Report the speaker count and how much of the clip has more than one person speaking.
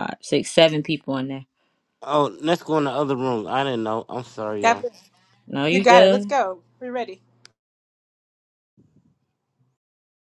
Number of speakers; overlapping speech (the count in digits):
3, about 8%